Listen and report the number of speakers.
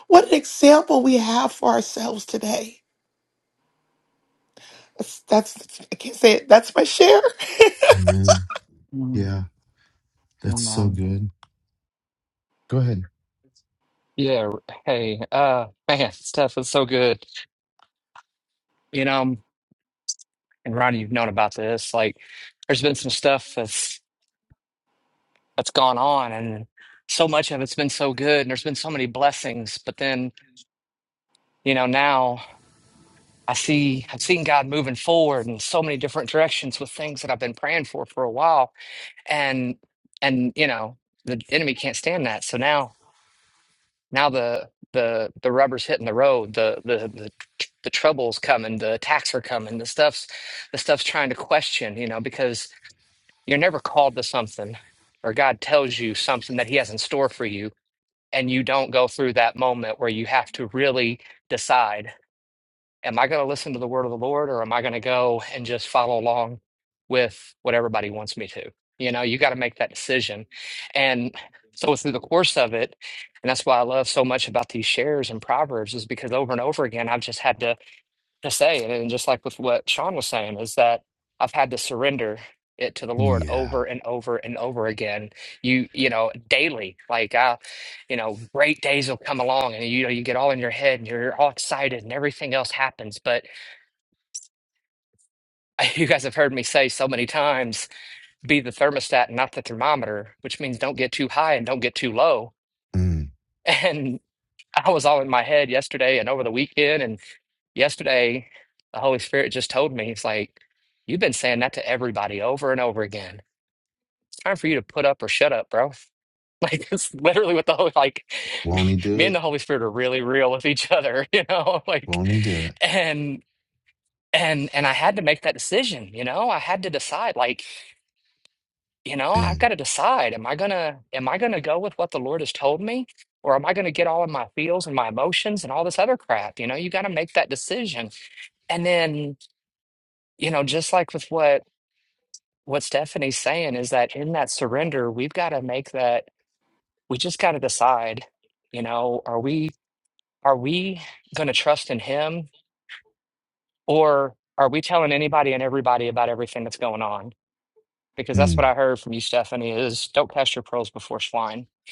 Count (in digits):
3